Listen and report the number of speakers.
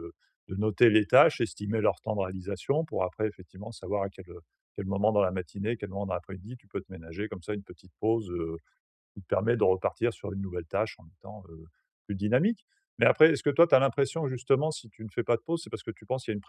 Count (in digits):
1